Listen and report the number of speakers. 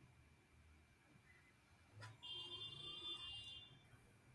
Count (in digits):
0